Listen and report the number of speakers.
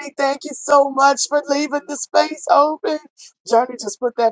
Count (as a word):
one